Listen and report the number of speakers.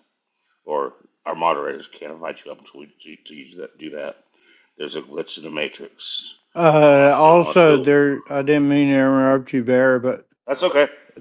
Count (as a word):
two